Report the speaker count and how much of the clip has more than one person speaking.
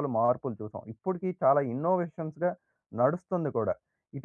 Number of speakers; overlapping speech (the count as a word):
one, no overlap